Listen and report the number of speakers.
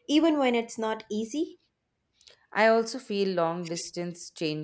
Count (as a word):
two